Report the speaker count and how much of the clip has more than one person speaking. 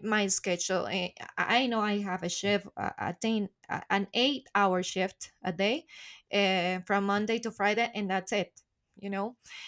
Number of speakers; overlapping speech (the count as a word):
one, no overlap